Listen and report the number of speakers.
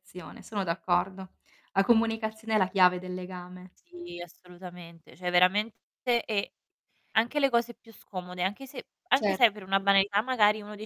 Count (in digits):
2